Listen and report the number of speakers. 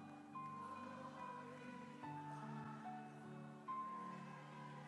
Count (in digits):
0